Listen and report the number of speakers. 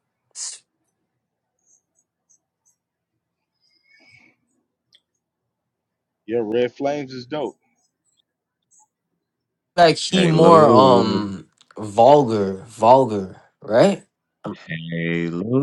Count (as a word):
three